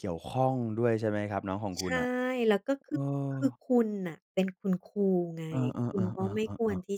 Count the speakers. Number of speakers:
two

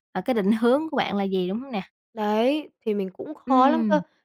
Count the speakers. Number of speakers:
two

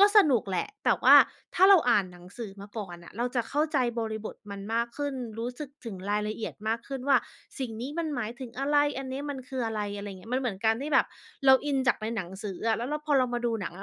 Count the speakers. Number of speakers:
one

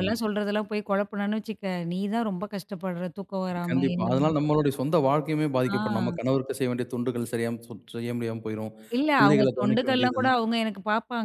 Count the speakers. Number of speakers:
two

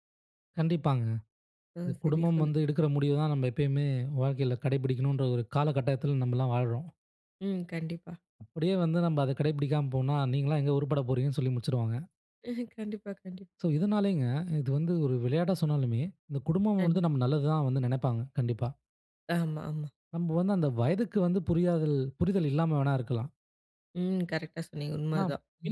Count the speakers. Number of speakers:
two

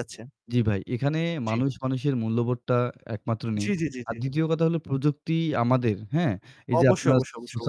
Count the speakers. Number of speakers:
two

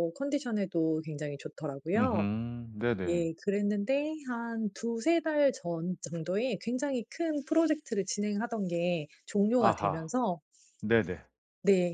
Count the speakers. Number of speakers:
two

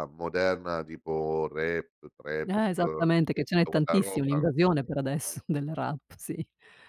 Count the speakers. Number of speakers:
two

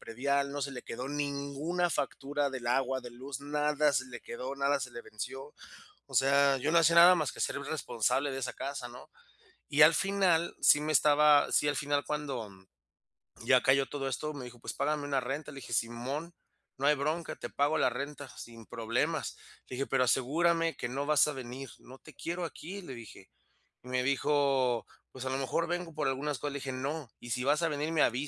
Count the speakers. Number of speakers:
one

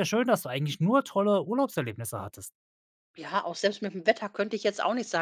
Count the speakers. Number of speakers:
two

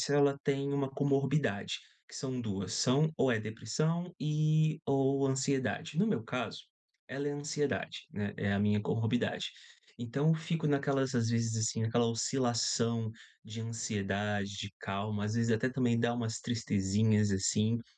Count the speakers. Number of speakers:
one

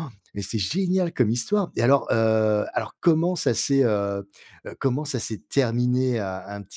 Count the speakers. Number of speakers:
one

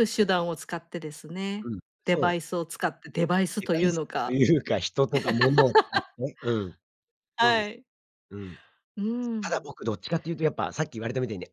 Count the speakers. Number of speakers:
two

